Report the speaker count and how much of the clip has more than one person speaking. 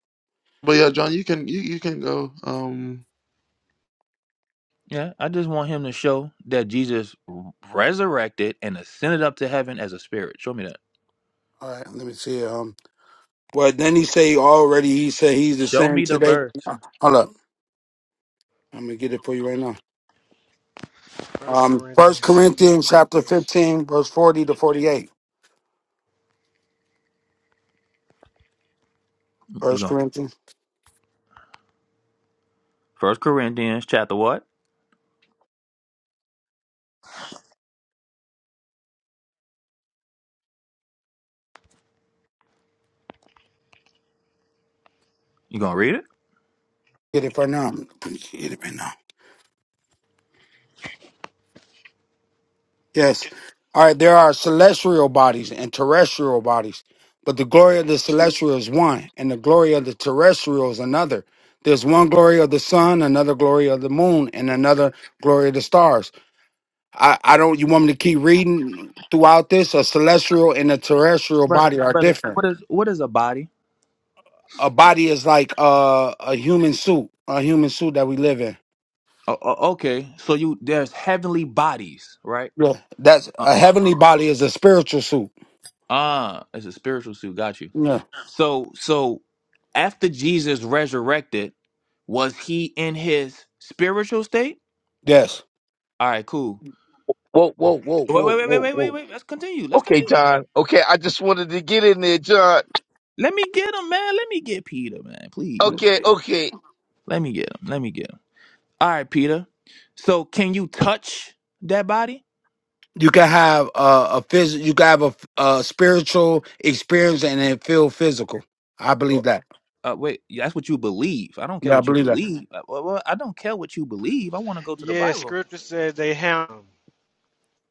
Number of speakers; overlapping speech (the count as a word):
five, about 5%